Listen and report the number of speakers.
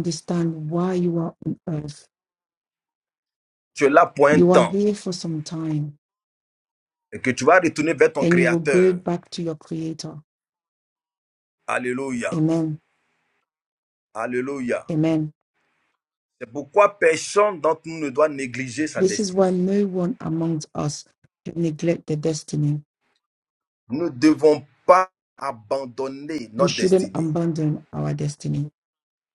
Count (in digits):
2